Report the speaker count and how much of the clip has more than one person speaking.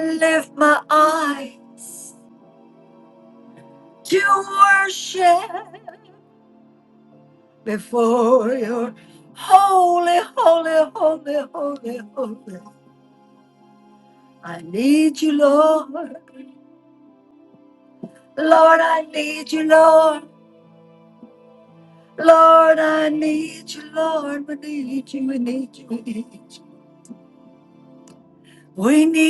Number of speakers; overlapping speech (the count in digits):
1, no overlap